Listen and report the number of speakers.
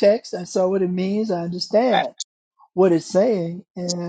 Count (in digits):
1